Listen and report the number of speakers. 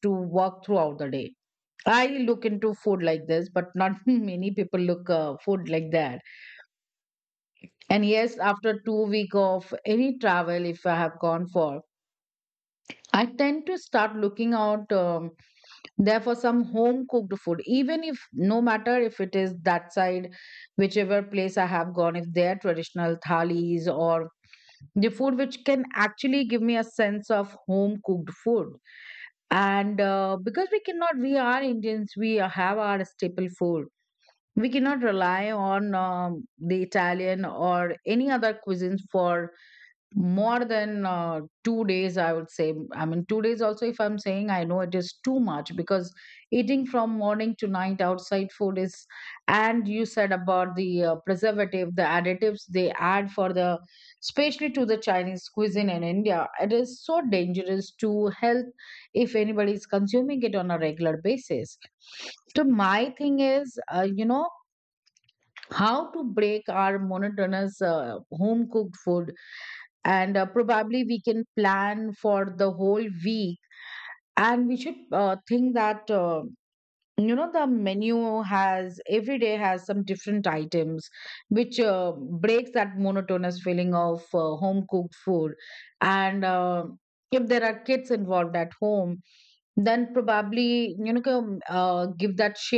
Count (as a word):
one